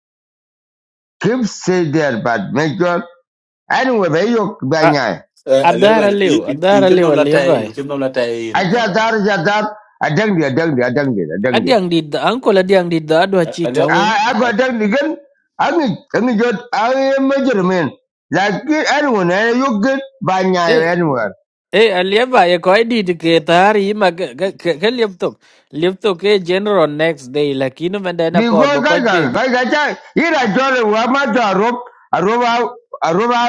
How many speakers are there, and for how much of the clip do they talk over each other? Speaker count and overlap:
three, about 14%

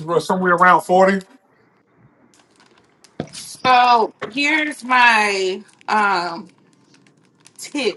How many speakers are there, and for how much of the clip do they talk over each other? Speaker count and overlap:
two, no overlap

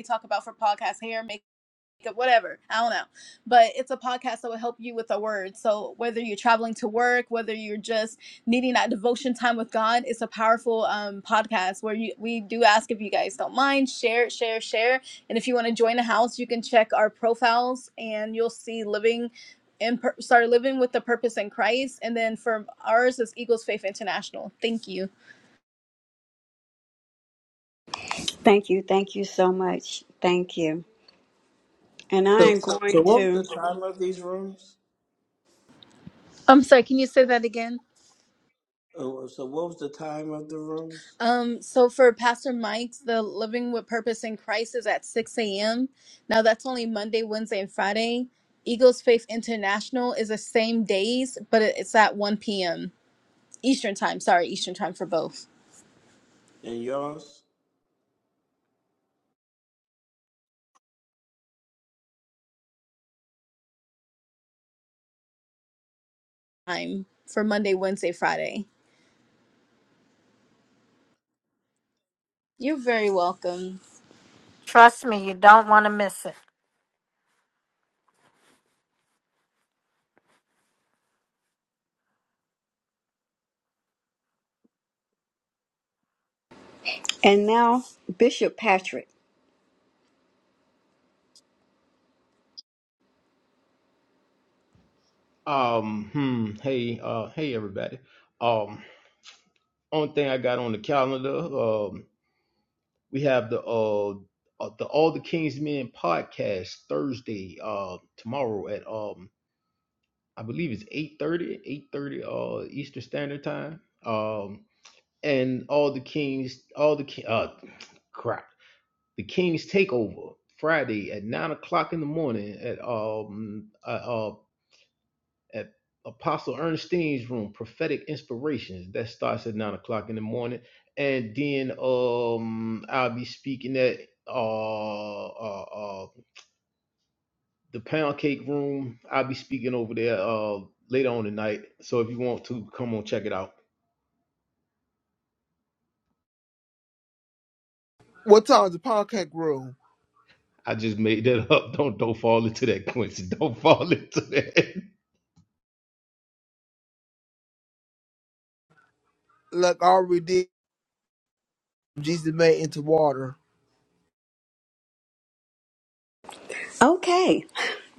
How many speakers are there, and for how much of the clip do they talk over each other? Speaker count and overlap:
six, about 1%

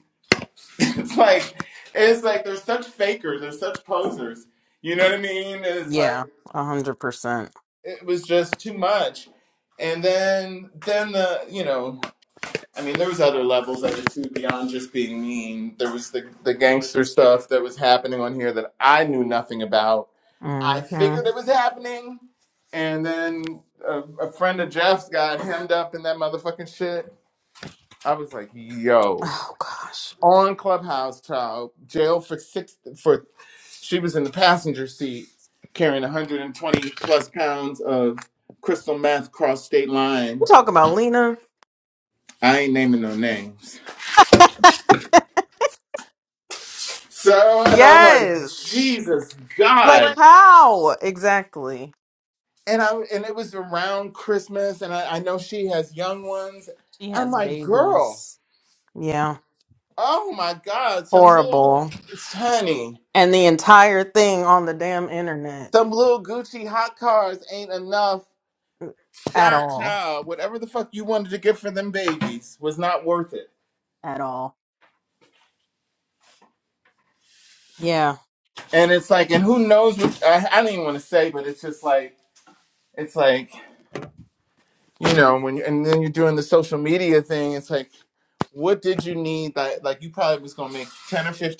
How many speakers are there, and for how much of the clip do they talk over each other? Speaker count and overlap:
two, about 4%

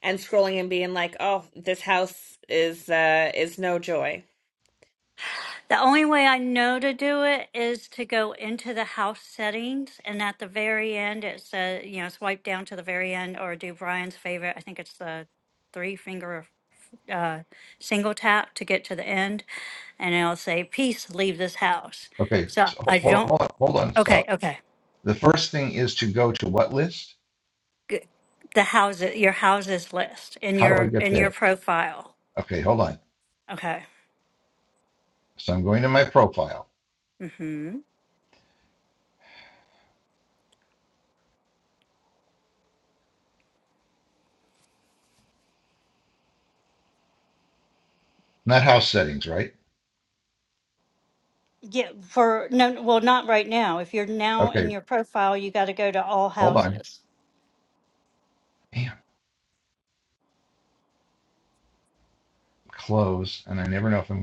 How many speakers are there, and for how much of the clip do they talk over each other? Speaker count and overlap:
three, about 4%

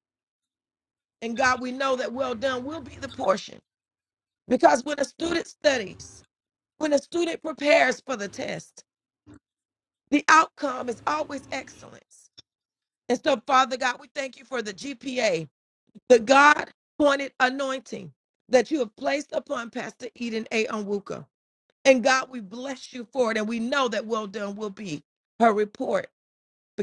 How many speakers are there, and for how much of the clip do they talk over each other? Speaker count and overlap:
one, no overlap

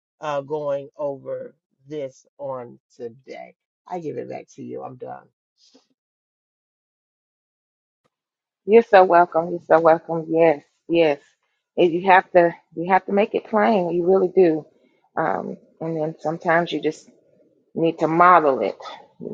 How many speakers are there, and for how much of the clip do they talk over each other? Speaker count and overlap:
two, no overlap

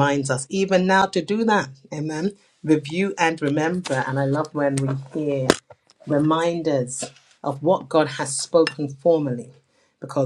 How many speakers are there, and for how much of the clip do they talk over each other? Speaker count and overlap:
one, no overlap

